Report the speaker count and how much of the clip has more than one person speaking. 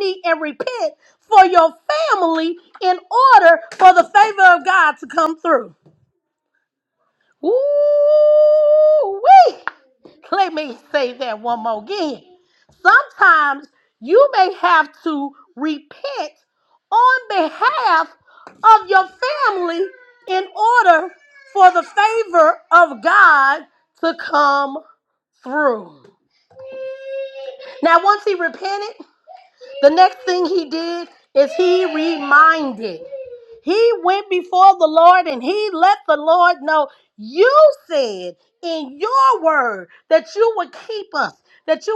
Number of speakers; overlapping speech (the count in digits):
1, no overlap